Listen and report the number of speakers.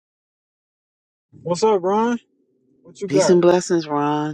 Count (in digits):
2